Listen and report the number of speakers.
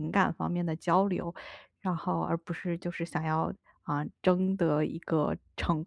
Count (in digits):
1